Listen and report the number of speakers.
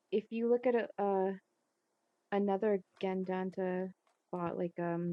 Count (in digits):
1